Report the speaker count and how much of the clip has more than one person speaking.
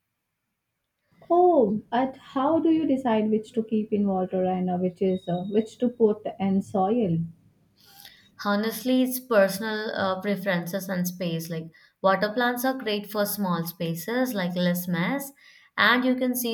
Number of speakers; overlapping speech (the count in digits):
2, no overlap